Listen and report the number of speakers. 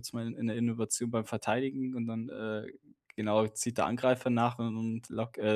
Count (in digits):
1